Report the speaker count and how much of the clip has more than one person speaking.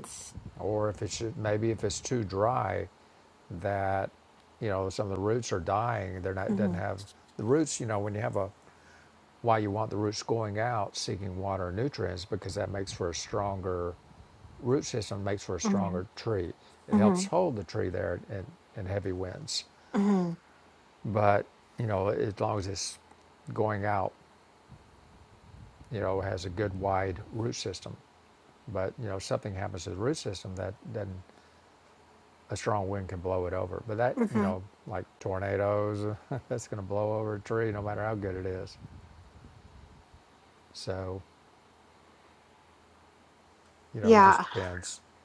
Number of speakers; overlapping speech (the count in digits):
2, about 4%